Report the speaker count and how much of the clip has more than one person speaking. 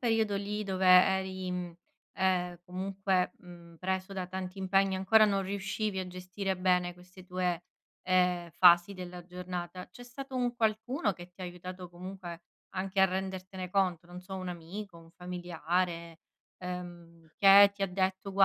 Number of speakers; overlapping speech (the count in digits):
1, no overlap